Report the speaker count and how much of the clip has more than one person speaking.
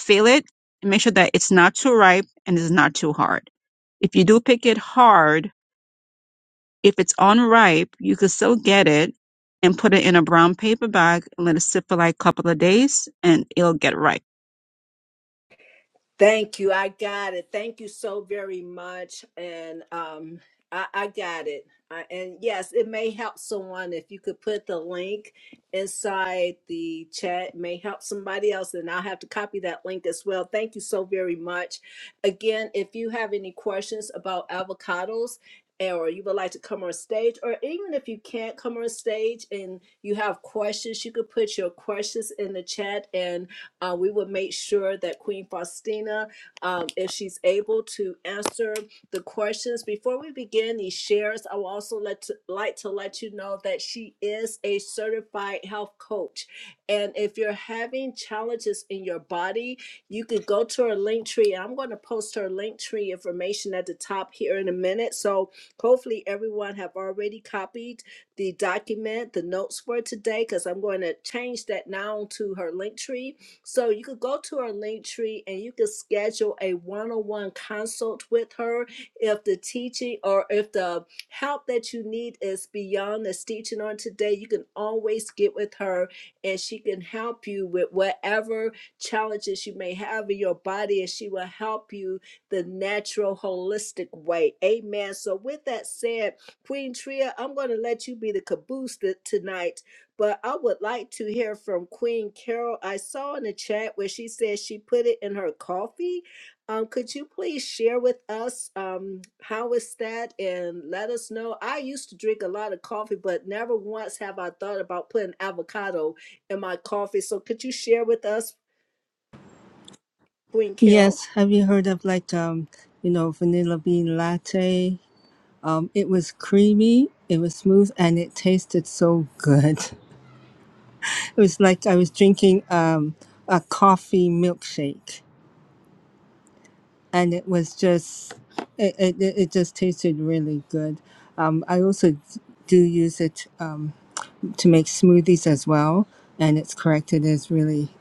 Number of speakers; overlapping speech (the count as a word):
three, under 1%